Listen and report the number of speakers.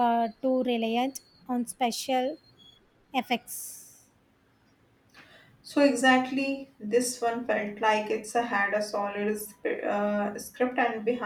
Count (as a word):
two